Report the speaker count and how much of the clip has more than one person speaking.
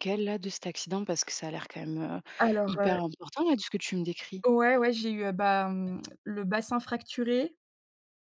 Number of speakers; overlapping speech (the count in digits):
2, about 4%